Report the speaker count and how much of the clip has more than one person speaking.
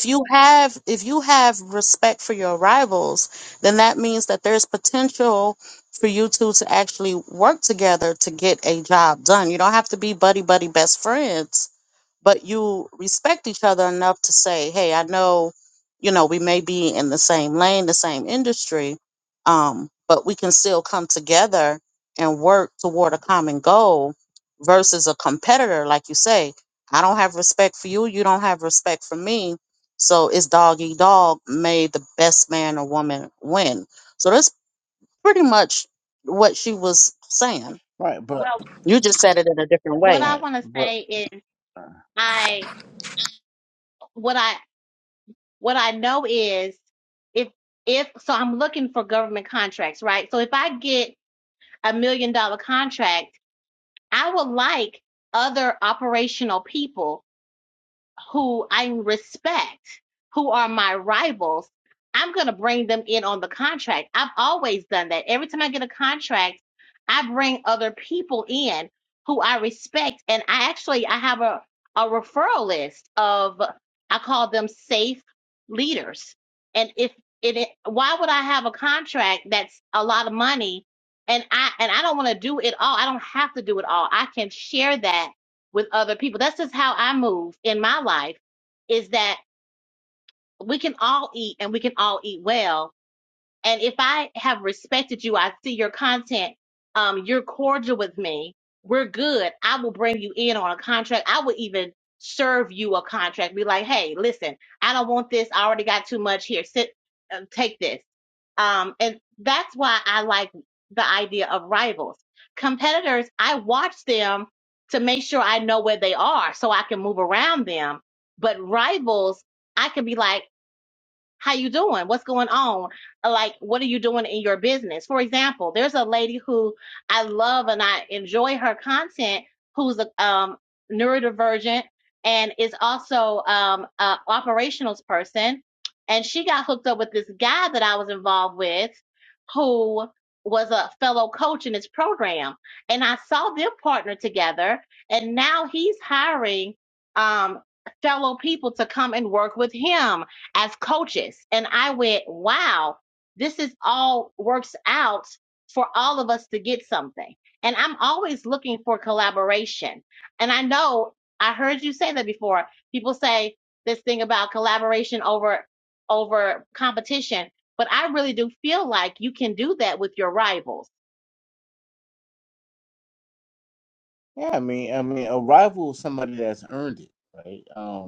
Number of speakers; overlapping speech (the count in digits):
3, about 1%